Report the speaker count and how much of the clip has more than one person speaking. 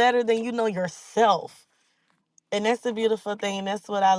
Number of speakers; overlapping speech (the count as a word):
one, no overlap